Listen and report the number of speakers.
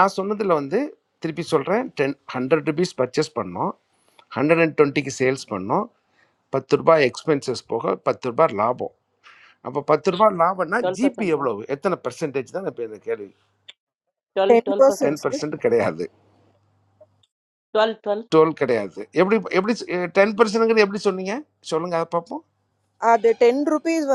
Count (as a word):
three